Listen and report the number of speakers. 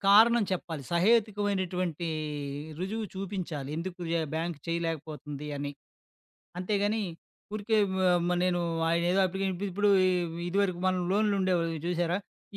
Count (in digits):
1